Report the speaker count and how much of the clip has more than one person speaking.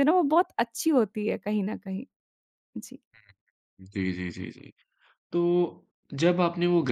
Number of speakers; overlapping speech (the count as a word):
two, no overlap